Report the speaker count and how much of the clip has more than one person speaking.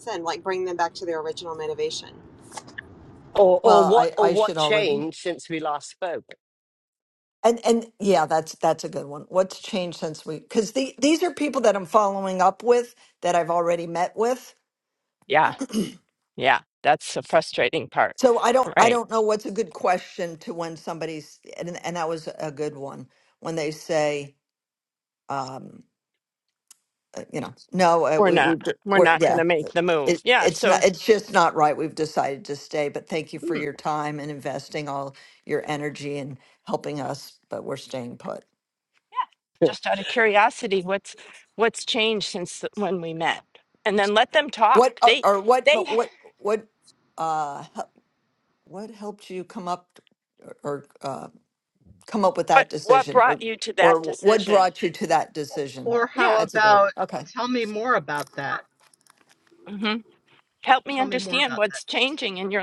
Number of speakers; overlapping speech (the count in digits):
5, about 13%